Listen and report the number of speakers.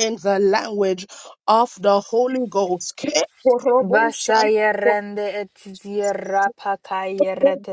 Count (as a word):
two